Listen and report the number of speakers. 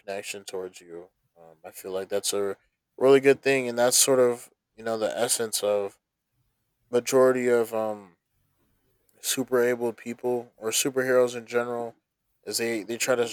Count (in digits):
1